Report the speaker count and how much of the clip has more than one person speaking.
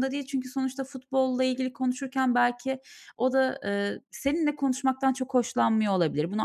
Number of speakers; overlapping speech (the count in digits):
1, no overlap